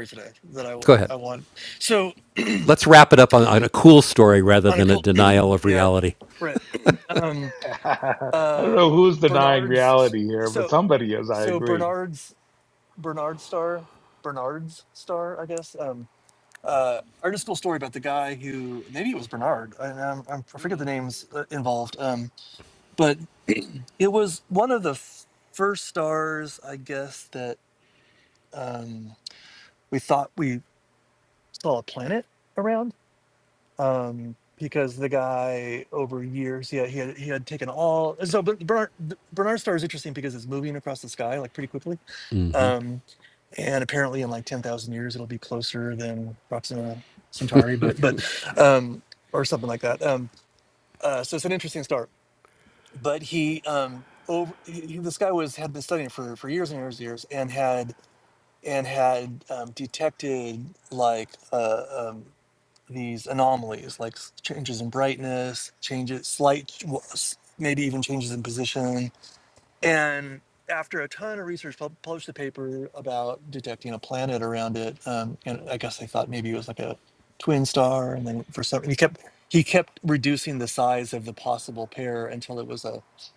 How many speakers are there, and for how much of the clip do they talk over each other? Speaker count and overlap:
3, about 3%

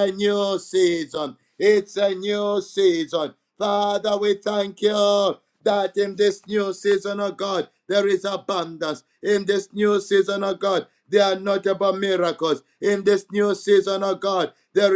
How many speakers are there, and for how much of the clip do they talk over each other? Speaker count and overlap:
1, no overlap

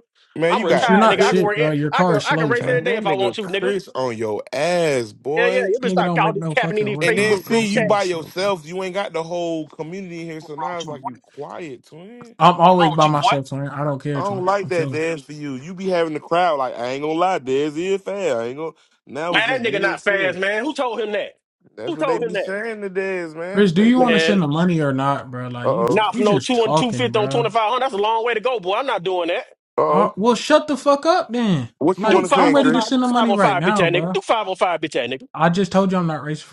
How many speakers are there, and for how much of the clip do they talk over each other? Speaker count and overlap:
3, about 42%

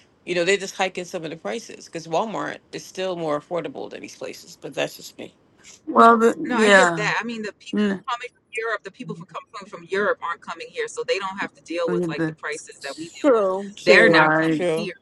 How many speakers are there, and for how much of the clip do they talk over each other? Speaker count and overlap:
3, about 15%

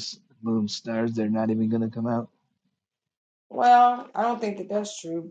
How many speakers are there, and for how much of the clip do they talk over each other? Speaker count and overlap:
2, no overlap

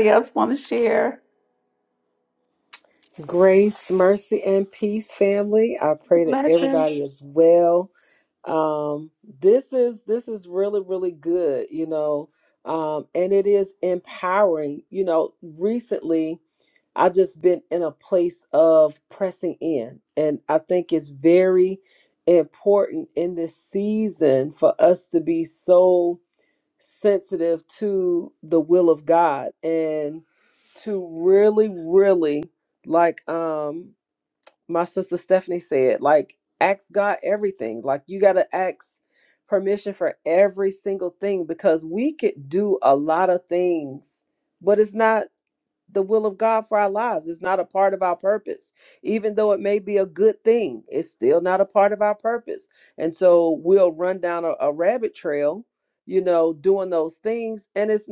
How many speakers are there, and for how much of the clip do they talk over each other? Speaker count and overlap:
2, about 1%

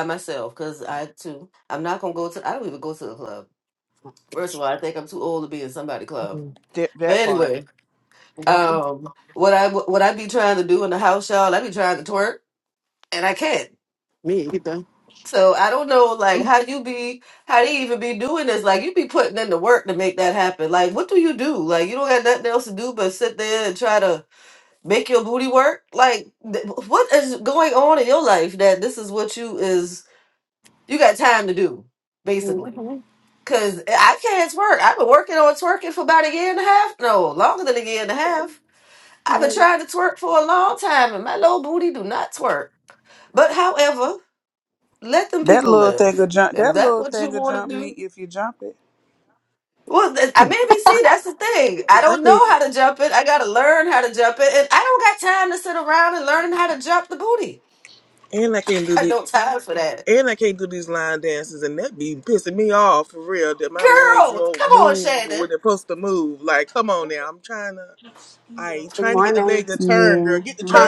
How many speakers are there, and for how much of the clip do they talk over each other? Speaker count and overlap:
4, about 10%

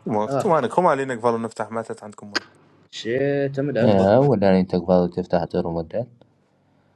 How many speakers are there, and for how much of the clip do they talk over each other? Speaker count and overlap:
3, about 9%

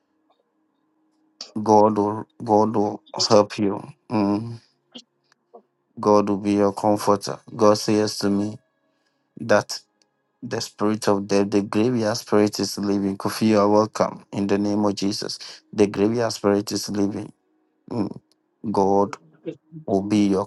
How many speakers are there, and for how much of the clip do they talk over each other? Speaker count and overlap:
1, no overlap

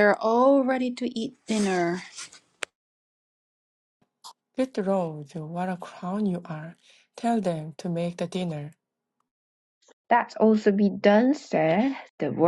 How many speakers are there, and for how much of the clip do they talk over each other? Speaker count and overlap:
3, no overlap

